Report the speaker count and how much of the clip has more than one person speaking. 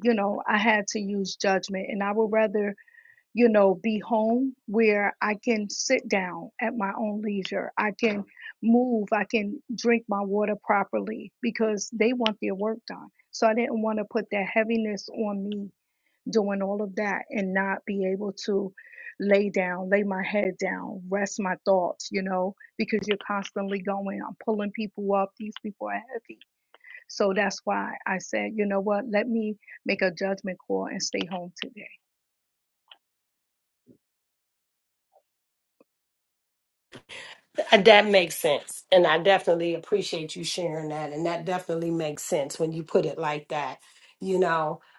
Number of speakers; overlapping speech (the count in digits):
2, no overlap